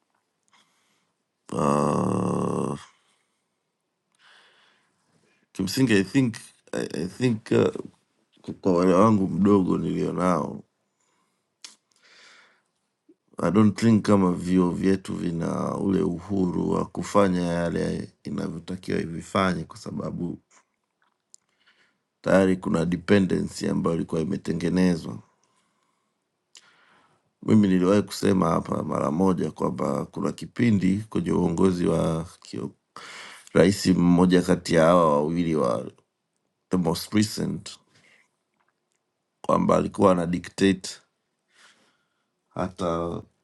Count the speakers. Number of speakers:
1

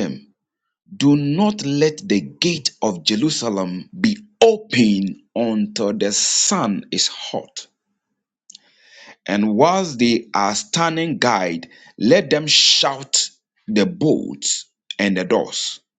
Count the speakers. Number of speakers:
1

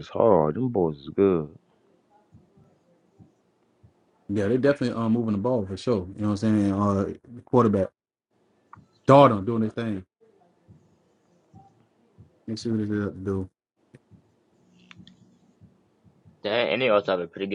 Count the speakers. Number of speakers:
3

